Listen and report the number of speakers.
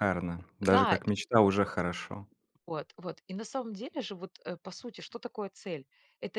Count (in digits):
2